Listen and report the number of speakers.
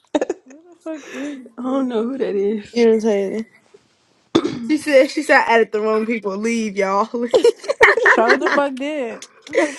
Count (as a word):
three